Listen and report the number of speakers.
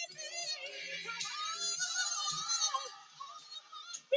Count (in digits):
0